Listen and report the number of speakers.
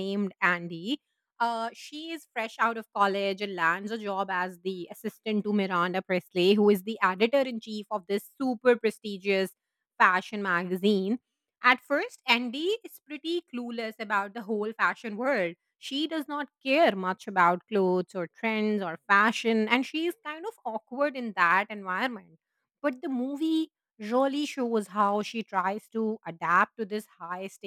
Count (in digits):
1